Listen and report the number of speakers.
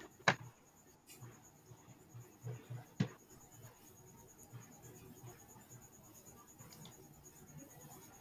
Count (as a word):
zero